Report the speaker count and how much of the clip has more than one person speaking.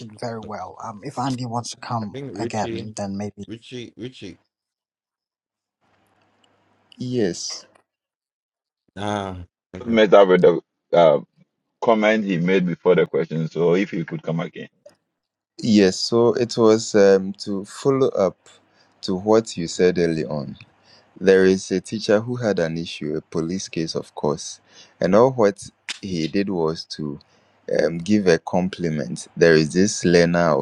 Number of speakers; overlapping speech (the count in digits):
4, about 3%